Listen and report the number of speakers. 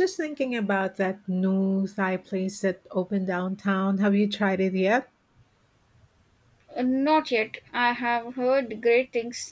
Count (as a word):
two